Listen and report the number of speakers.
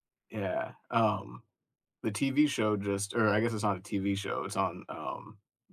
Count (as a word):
one